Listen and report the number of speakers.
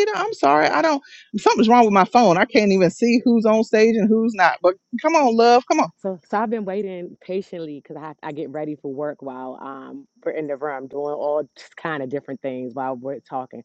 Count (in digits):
2